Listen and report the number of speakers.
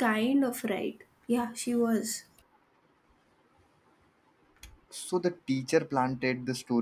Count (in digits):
2